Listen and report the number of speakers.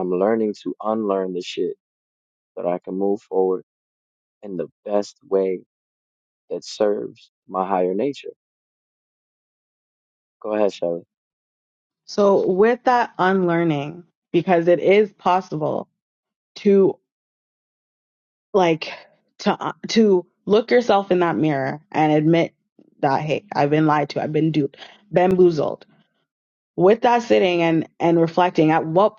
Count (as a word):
two